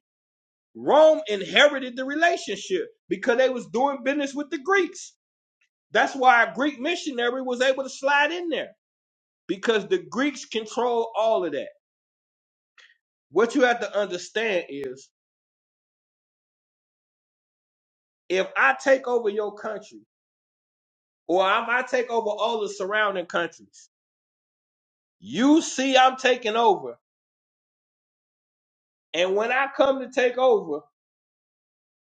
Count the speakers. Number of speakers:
1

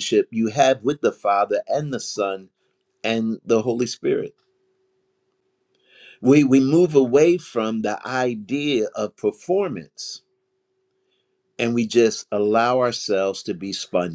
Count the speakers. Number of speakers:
1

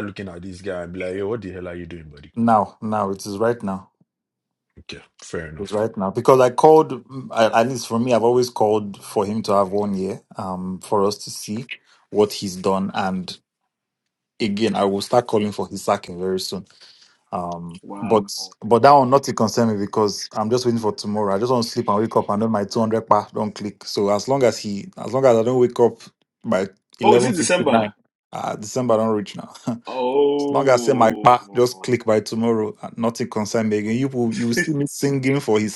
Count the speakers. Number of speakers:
3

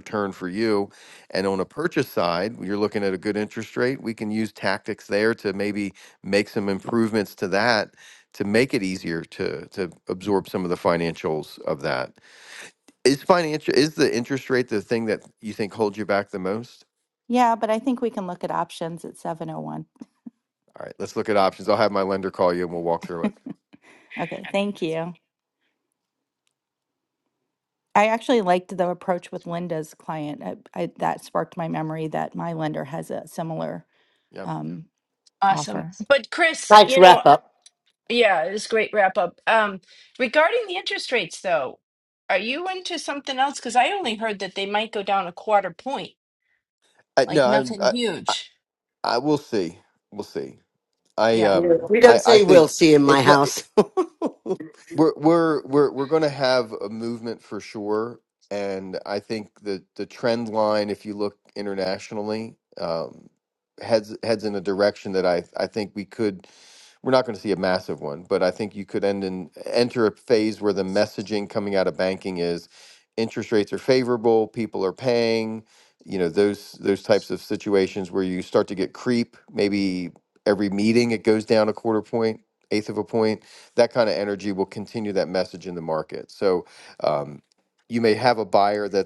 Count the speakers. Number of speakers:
4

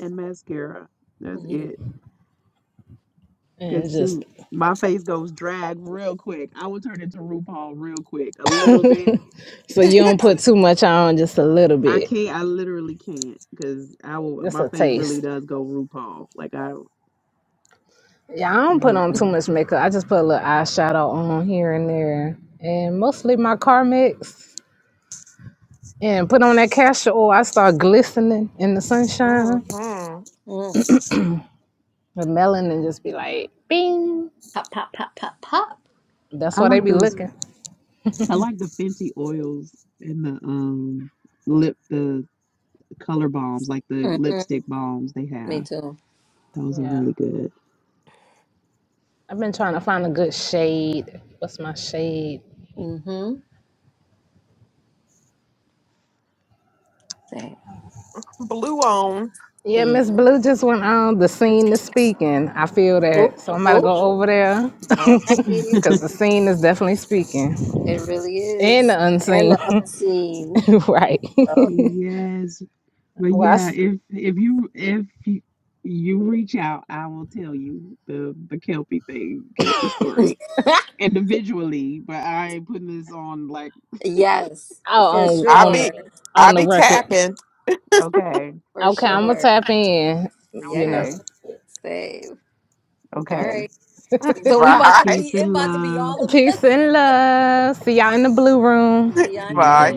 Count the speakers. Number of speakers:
4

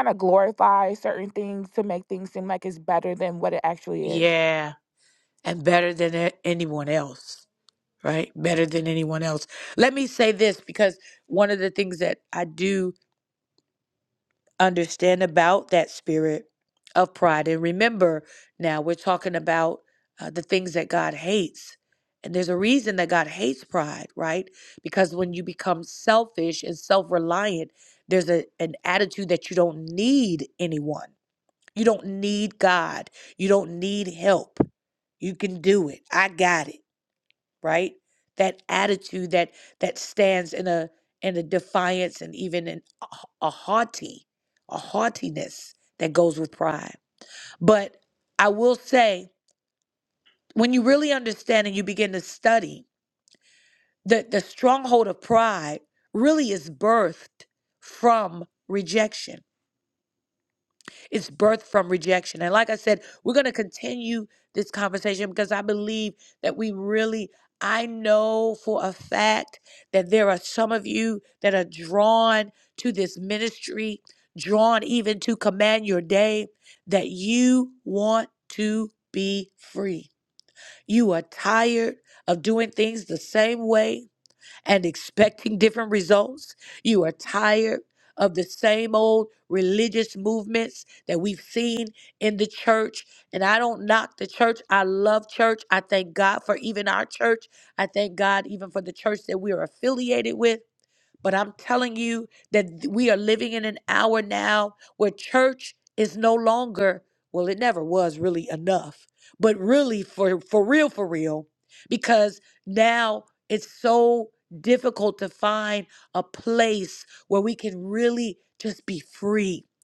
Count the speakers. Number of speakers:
2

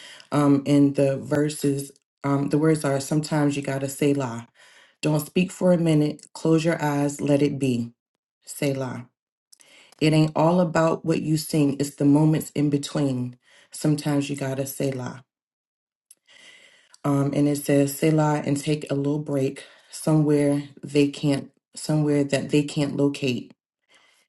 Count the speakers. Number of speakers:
1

